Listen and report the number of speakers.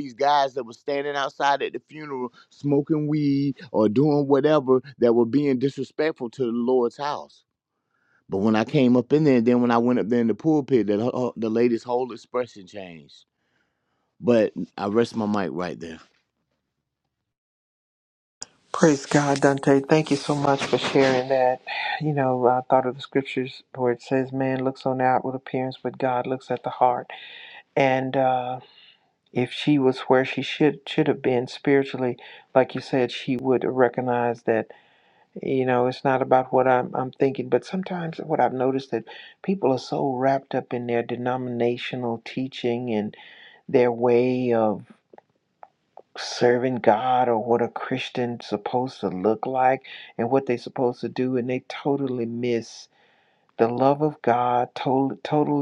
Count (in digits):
2